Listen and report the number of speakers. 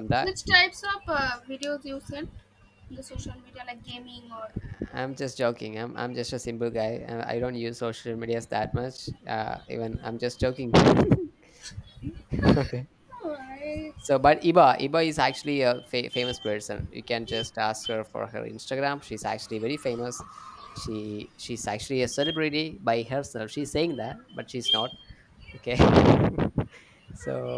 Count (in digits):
2